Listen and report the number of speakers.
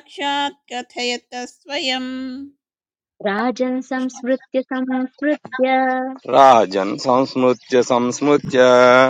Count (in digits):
3